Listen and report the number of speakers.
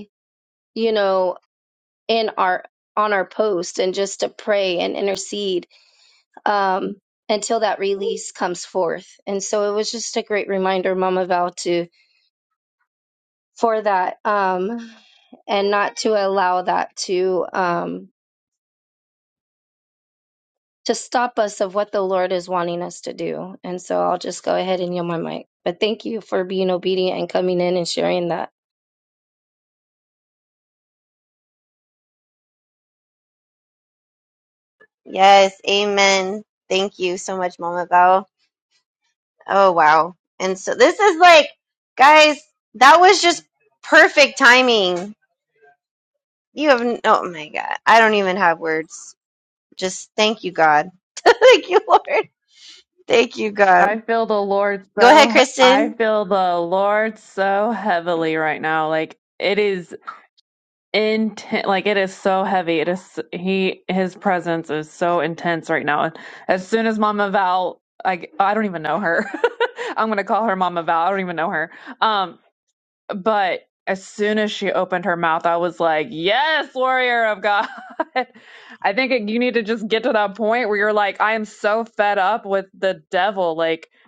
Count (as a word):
three